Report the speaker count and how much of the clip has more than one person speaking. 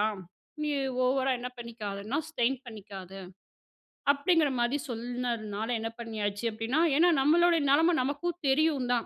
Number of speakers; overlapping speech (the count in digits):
1, no overlap